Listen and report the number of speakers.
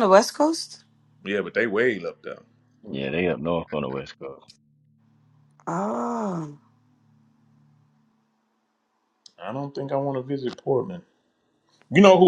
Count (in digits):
3